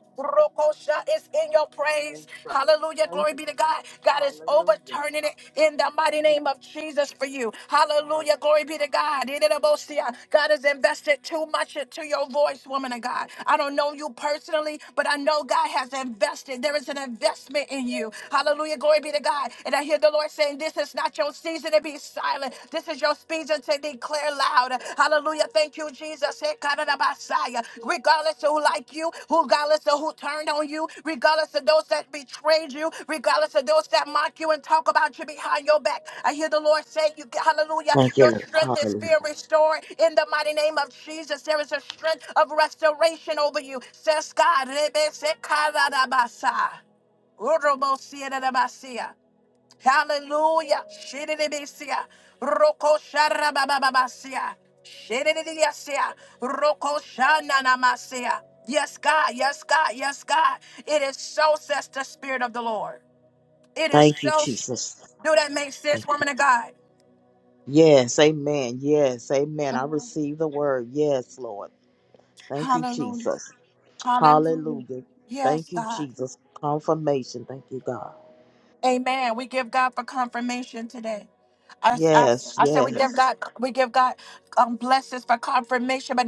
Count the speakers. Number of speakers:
2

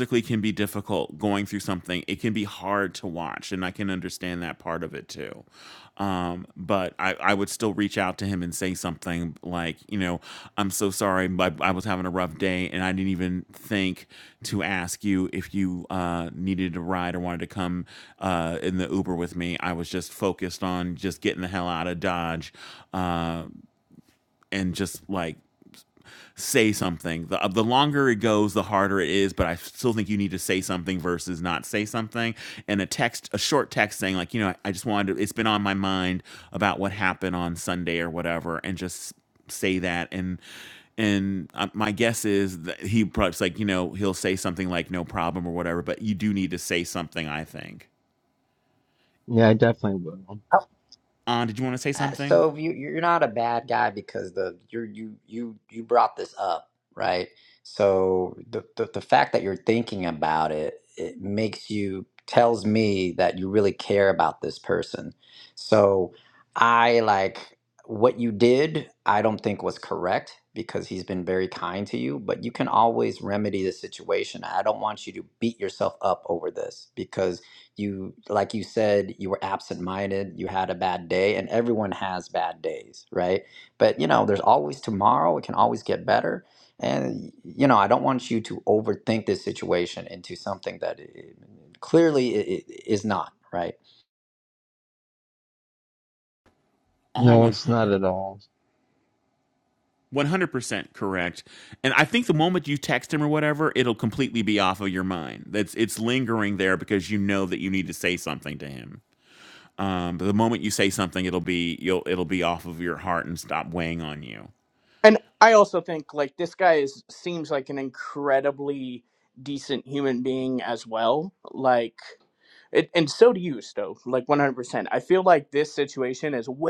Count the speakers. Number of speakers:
4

